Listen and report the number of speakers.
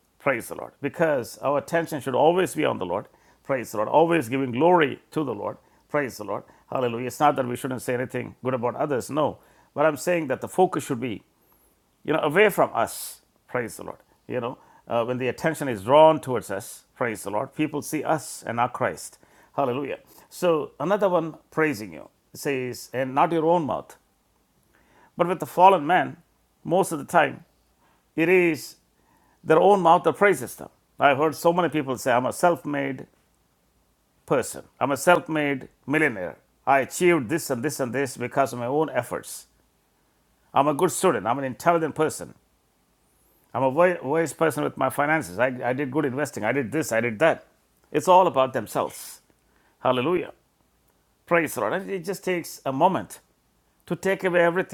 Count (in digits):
1